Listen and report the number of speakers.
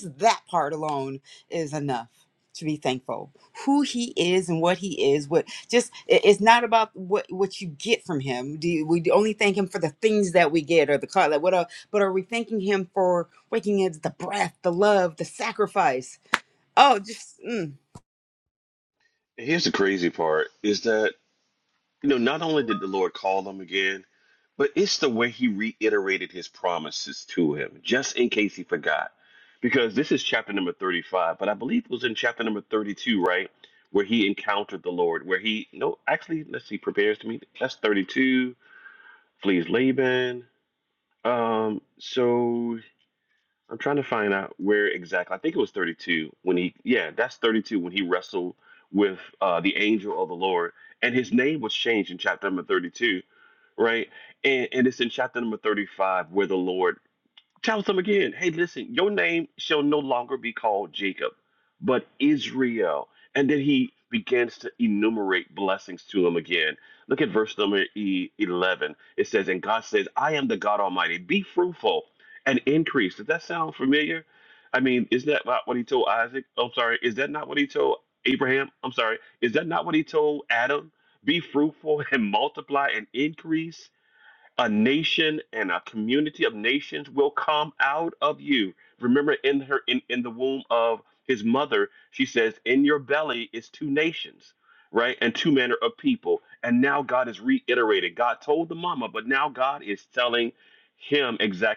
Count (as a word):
two